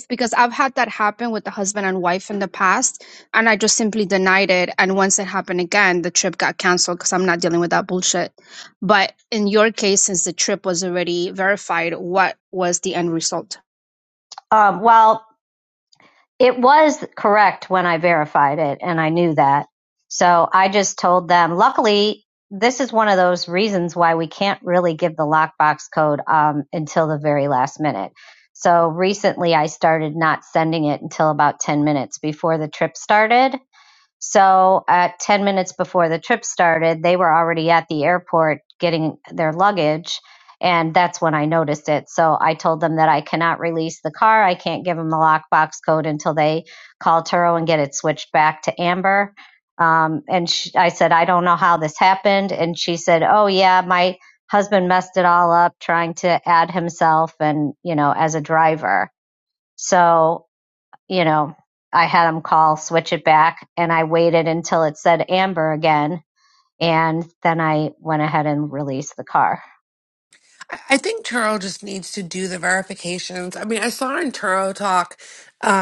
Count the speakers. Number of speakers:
3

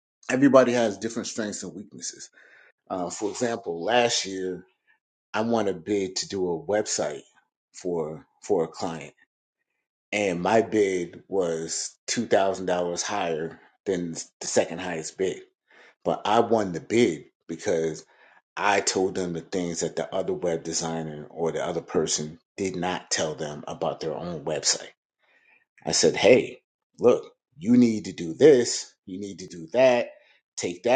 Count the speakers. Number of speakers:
1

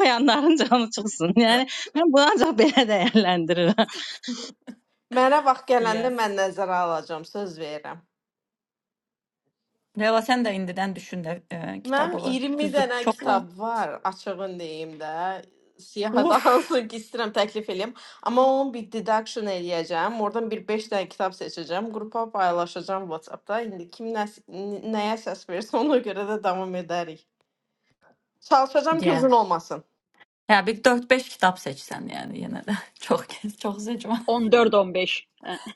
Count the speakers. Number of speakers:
4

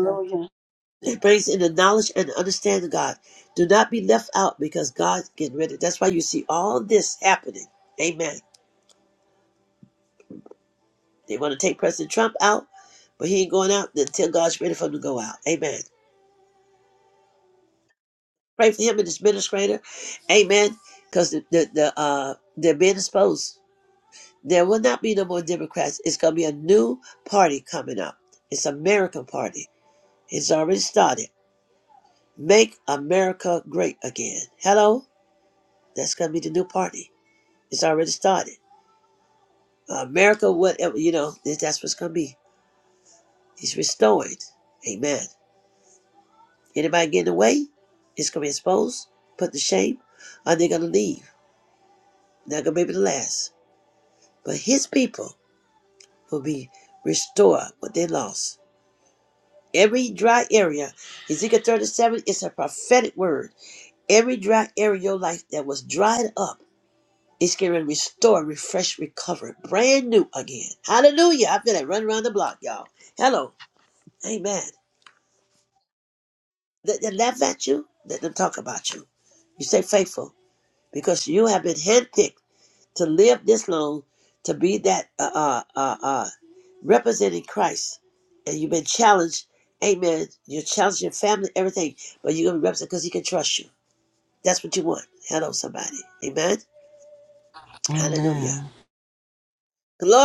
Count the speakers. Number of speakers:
2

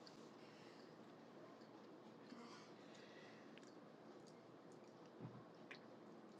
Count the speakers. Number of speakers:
0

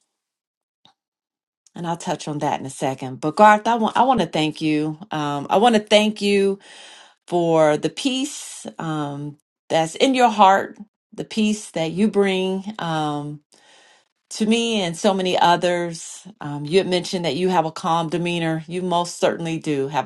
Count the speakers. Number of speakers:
1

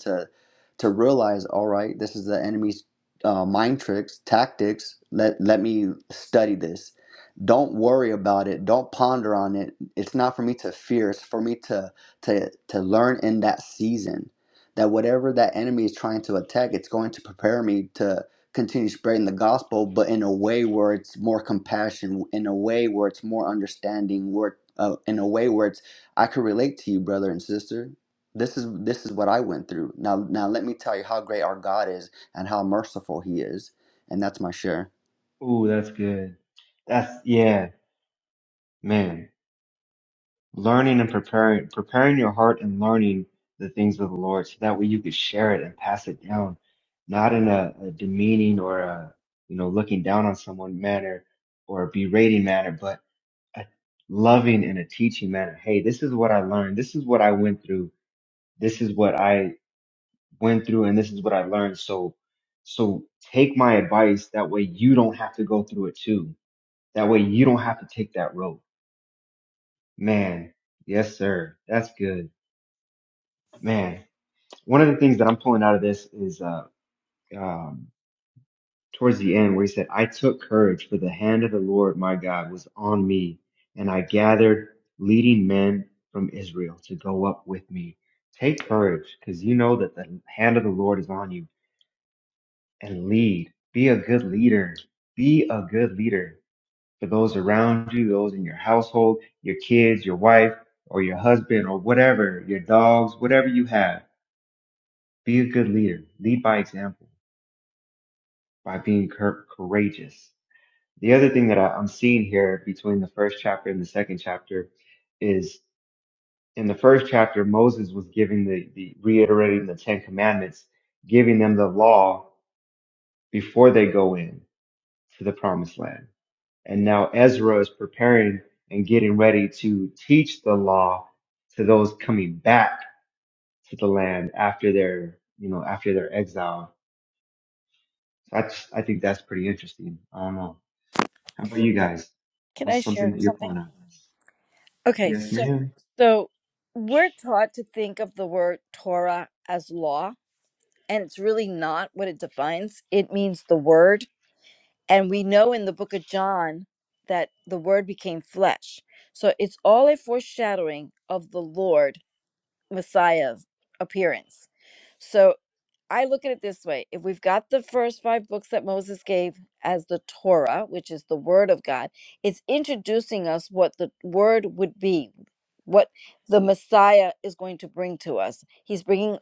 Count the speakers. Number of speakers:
3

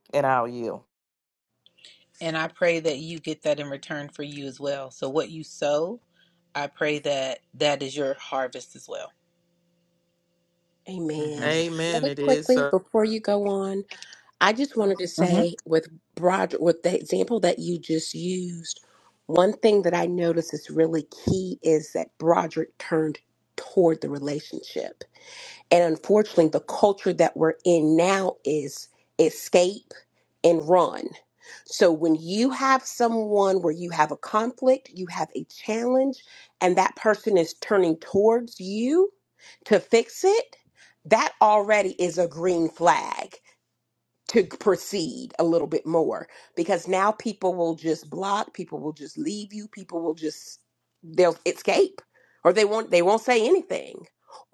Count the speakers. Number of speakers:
3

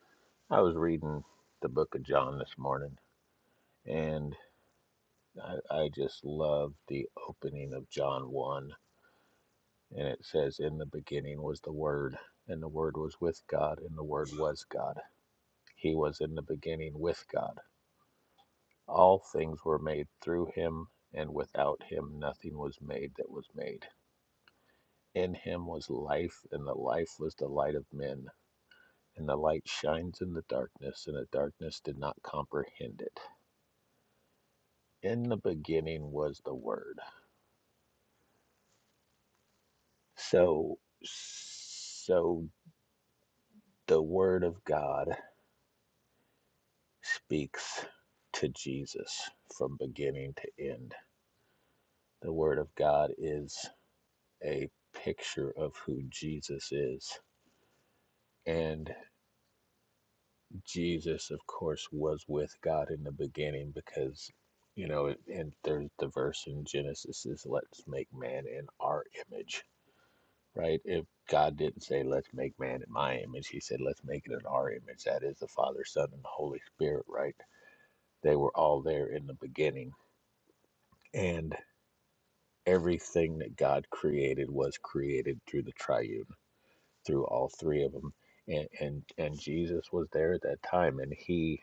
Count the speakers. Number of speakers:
1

